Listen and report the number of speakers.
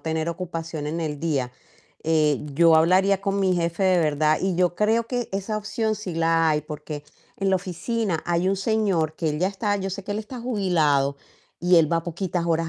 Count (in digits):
1